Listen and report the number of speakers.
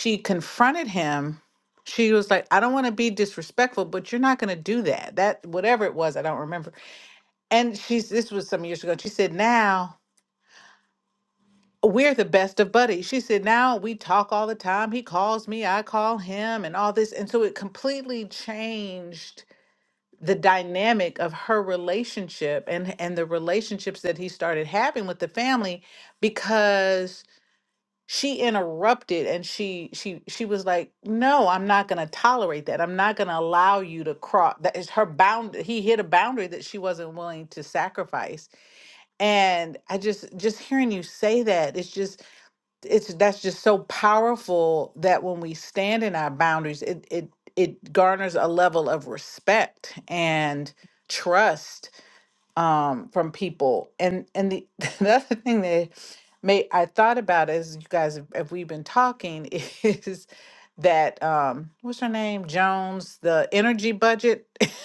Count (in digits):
1